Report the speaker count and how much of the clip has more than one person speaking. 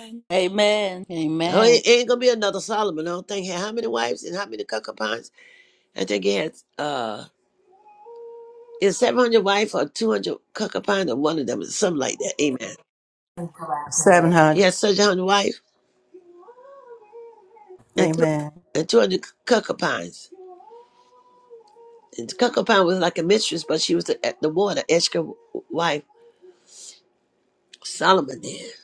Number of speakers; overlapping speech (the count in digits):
3, about 3%